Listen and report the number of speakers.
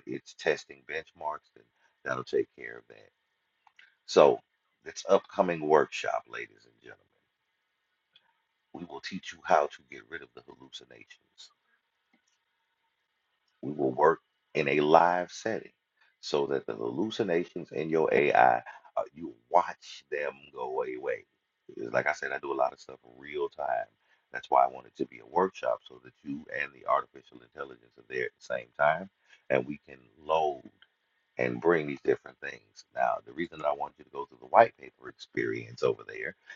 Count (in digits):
1